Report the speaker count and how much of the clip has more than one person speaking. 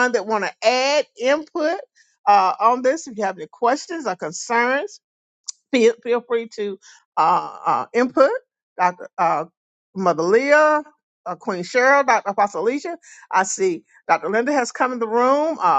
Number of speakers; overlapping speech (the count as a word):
one, no overlap